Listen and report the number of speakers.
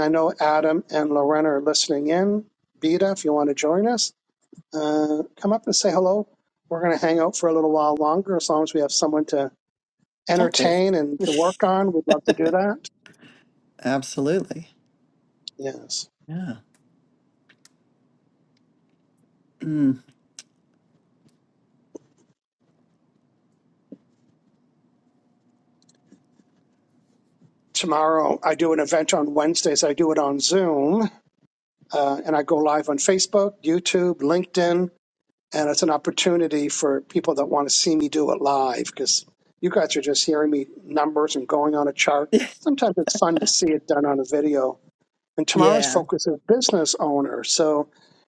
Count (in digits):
2